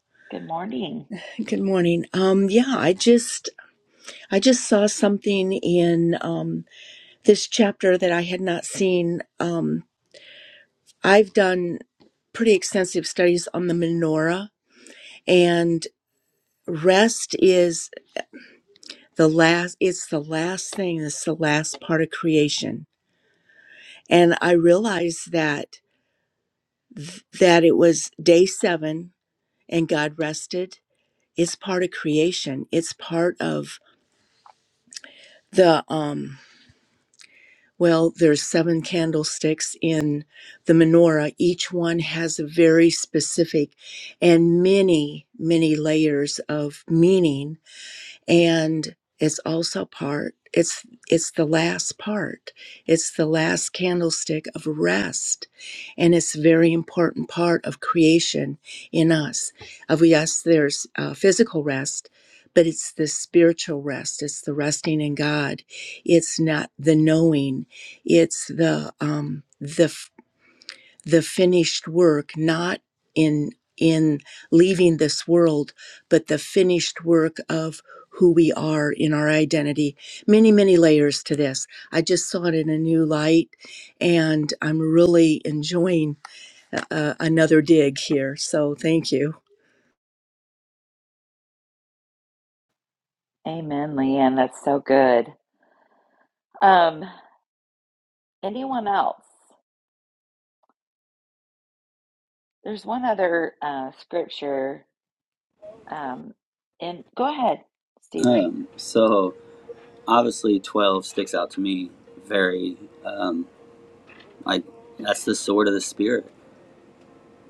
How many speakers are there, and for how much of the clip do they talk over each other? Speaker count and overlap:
3, under 1%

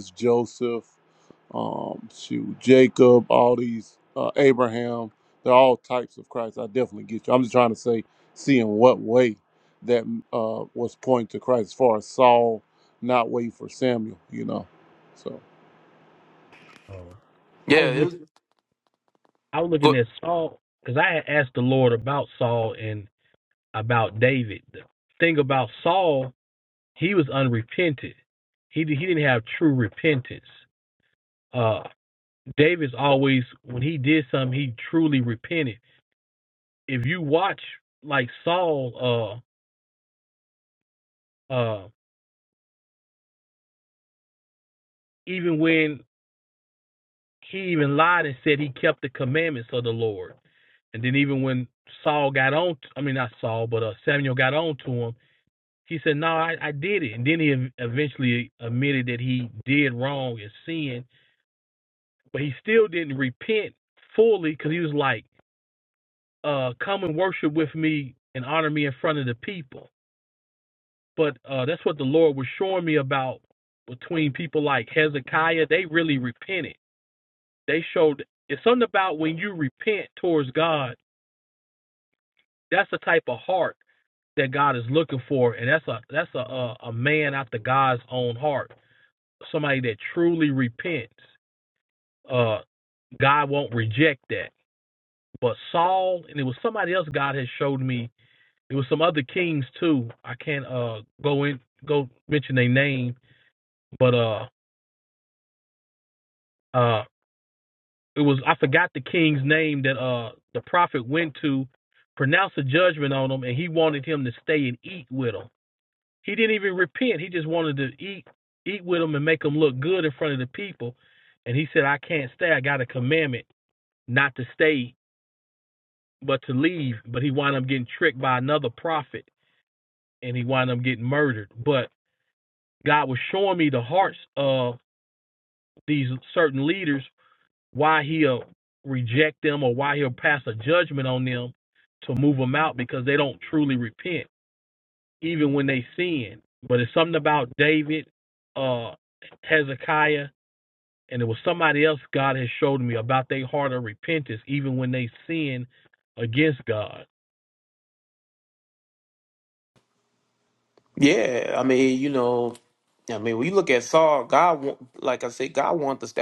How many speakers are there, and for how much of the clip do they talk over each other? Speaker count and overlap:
3, under 1%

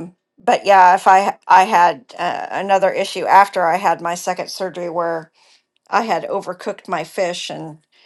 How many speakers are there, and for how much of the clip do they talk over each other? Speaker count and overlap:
1, no overlap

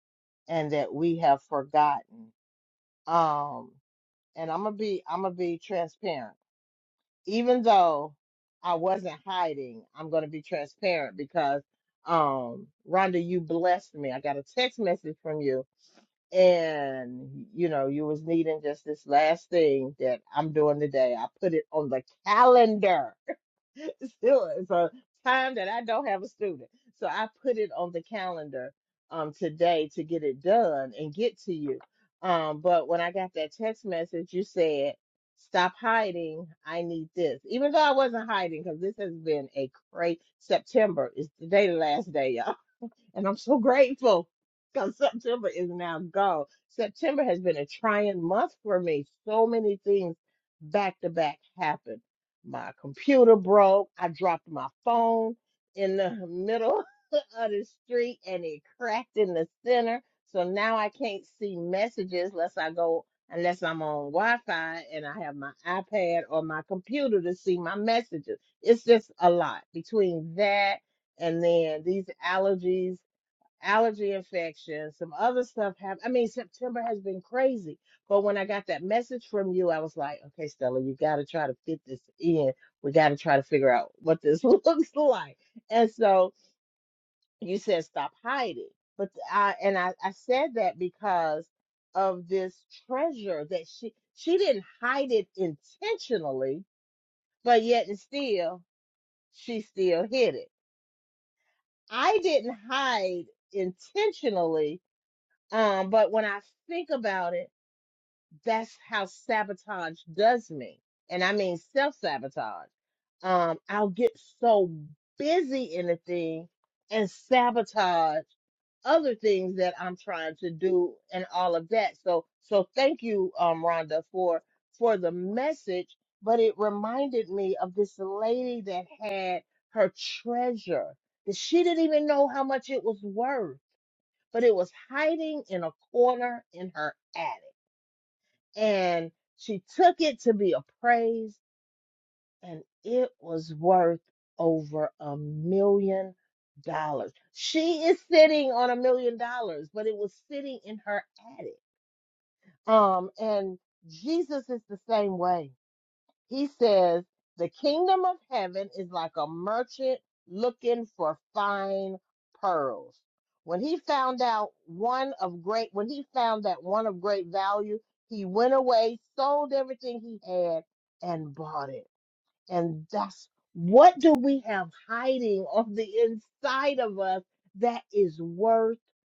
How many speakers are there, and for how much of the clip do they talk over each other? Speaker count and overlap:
1, no overlap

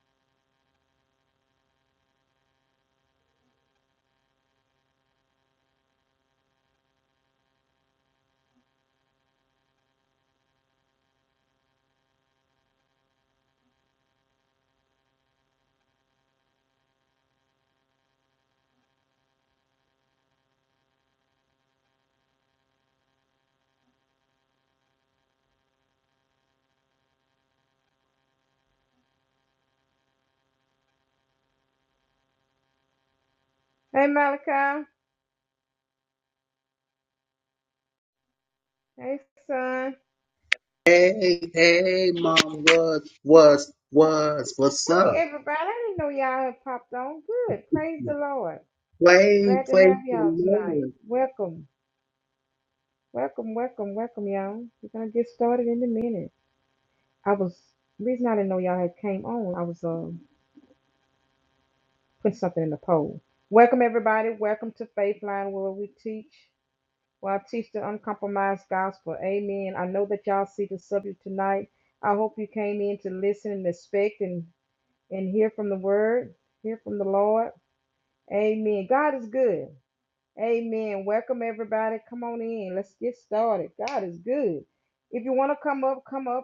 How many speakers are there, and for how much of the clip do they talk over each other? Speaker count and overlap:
2, about 2%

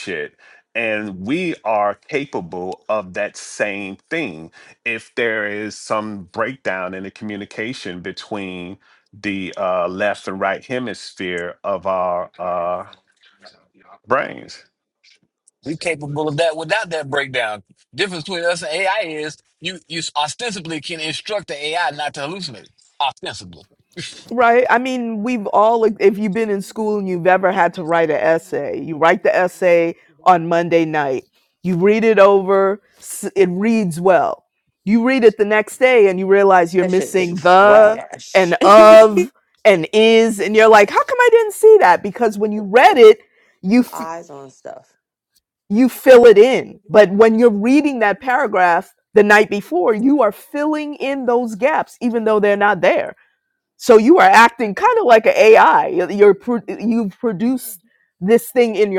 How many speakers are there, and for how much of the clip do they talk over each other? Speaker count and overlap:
4, about 2%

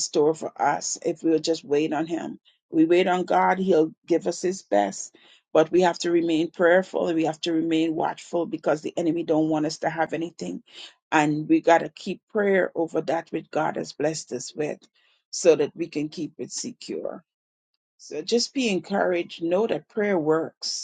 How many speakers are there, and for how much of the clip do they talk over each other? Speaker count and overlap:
1, no overlap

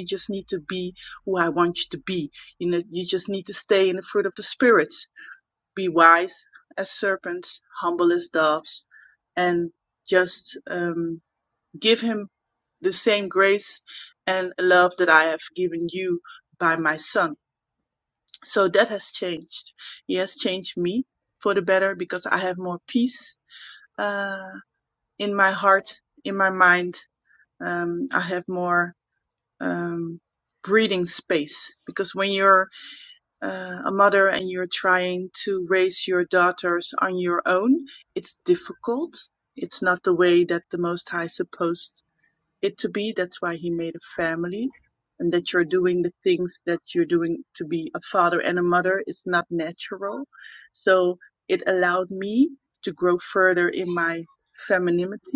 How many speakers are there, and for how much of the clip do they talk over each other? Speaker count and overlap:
1, no overlap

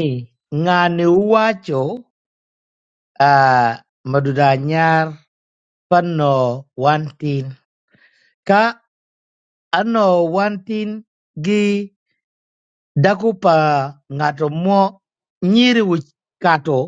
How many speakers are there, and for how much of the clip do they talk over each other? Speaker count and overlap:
1, no overlap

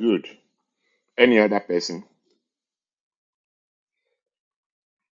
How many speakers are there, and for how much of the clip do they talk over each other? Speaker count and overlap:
1, no overlap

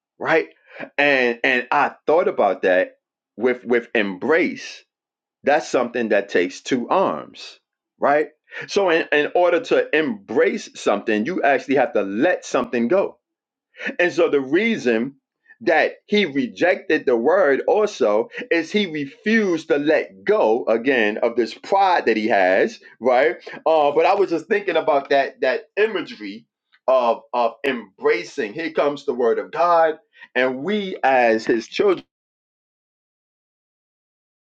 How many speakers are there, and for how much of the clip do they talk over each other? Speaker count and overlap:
1, no overlap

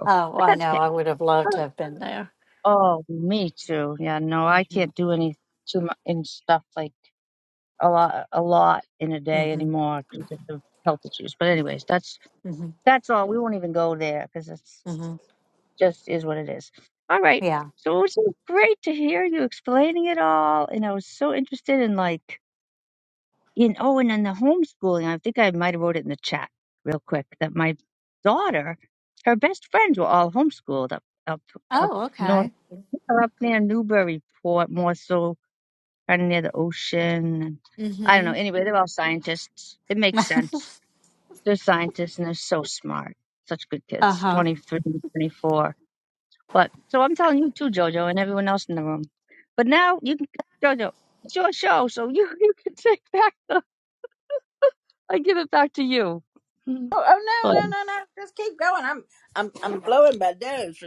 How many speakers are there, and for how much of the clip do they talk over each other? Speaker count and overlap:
3, about 4%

